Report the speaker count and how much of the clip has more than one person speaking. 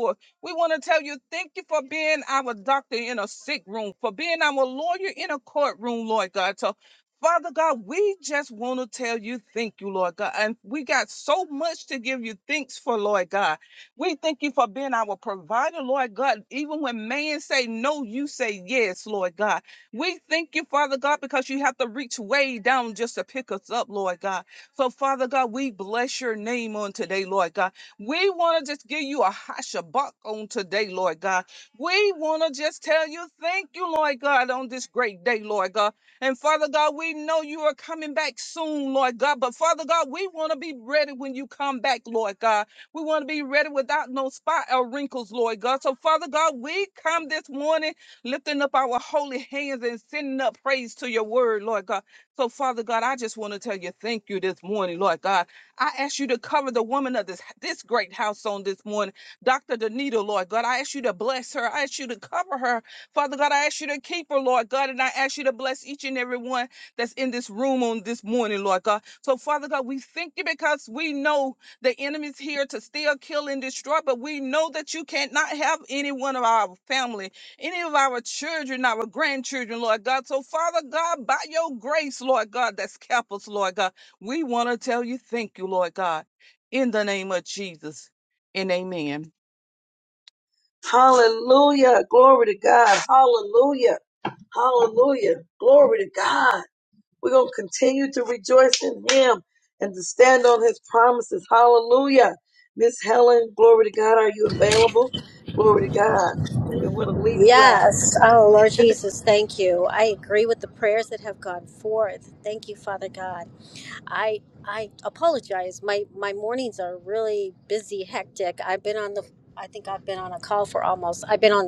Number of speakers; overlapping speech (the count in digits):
3, under 1%